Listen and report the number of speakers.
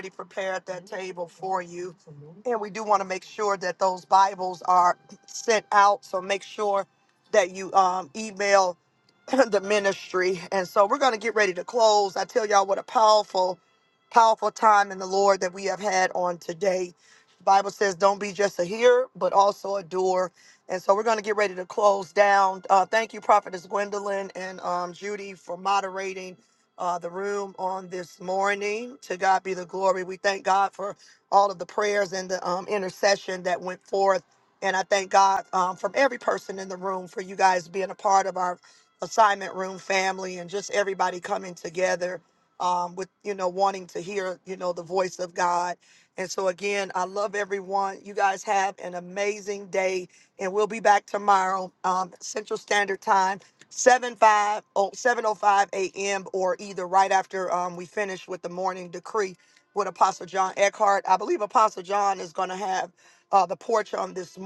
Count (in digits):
1